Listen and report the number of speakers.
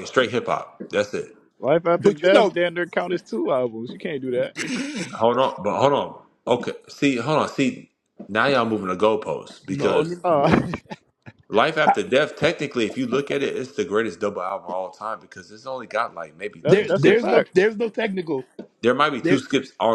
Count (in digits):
3